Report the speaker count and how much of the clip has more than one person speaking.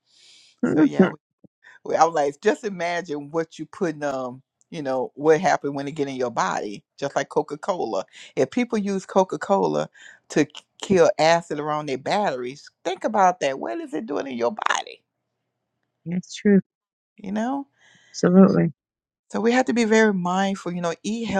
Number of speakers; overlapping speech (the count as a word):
two, about 2%